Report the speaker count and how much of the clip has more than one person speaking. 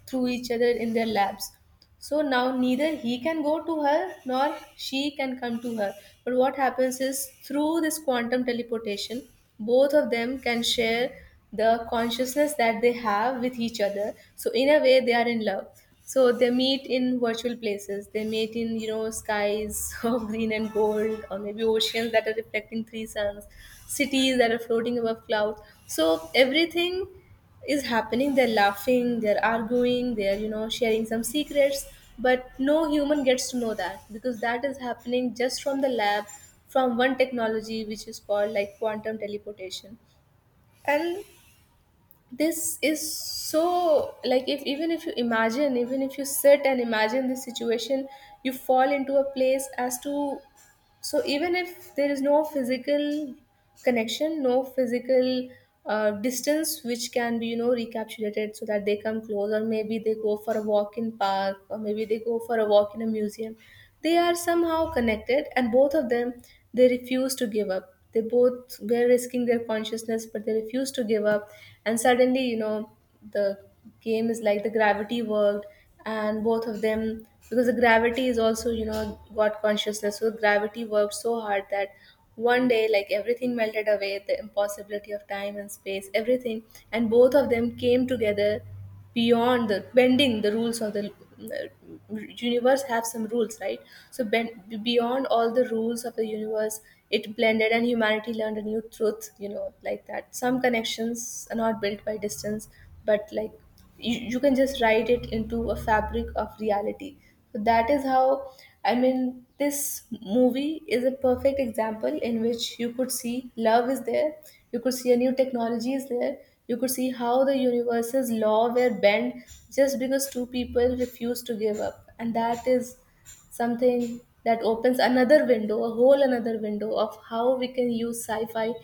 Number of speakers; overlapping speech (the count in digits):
1, no overlap